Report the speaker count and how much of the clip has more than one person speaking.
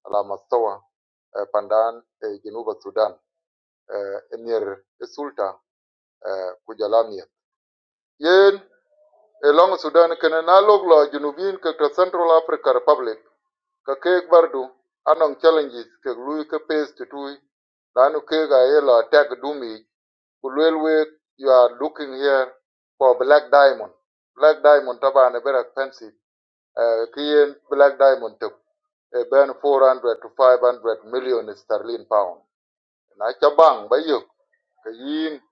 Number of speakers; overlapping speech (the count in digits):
1, no overlap